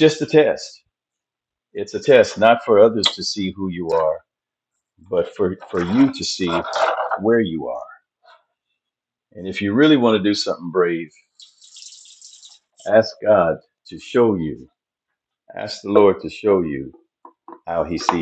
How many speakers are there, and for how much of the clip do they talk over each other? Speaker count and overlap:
1, no overlap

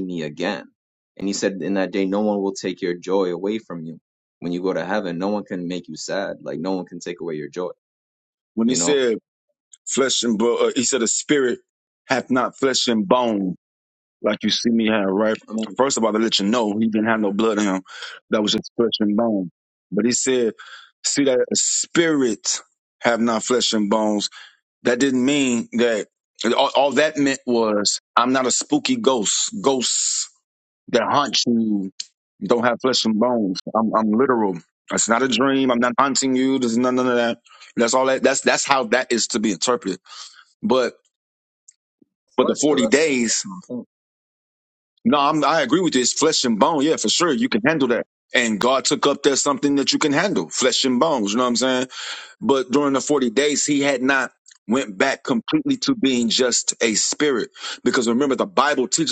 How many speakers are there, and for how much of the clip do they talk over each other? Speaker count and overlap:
2, about 2%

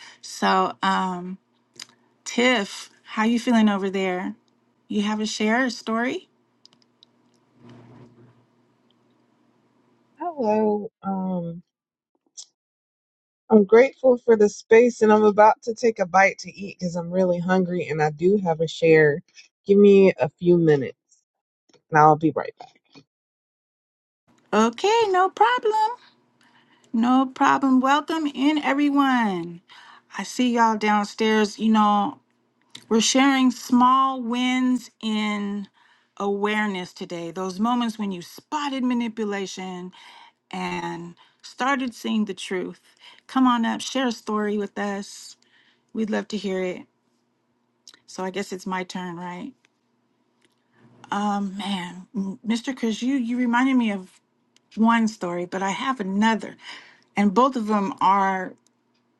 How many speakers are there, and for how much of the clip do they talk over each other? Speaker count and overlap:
2, no overlap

